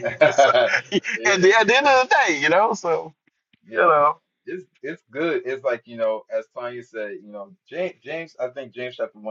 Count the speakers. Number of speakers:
2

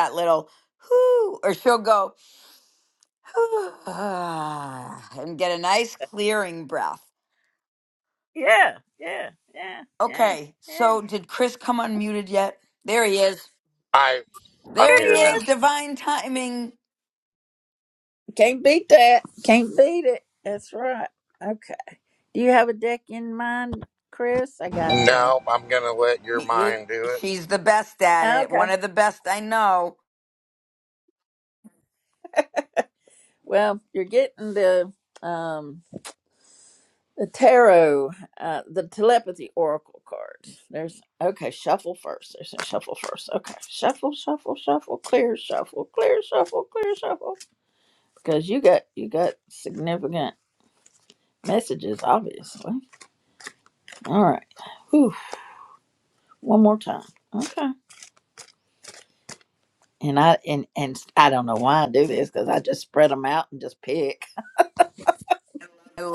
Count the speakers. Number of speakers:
3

